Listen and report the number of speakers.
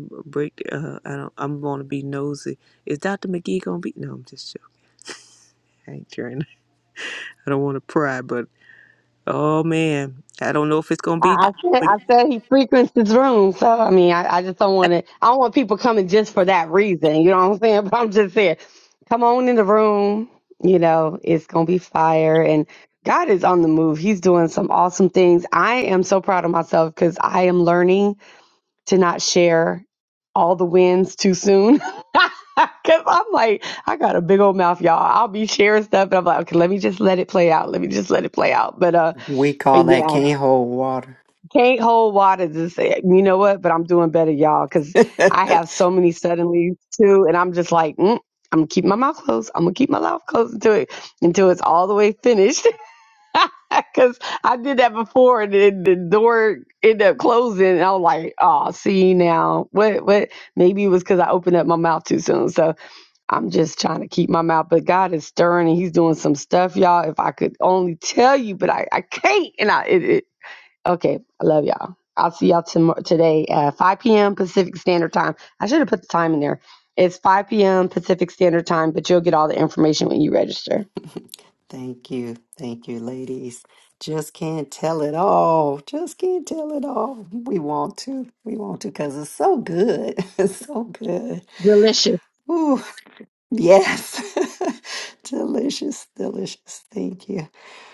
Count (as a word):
three